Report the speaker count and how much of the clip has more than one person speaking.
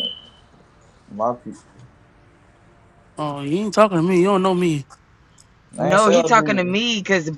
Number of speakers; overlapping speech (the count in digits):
3, about 13%